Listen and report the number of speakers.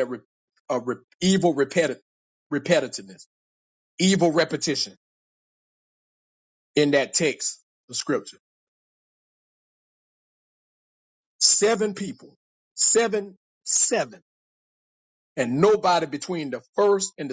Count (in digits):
1